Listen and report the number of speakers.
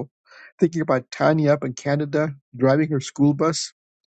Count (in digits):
1